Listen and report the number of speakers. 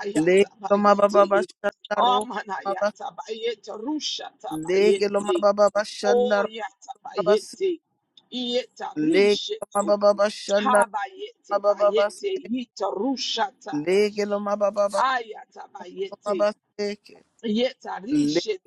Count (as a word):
two